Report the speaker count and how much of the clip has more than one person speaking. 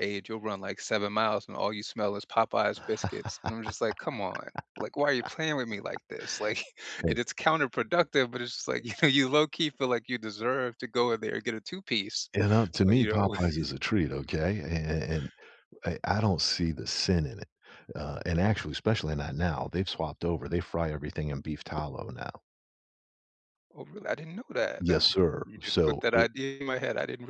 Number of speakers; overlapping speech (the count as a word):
two, about 8%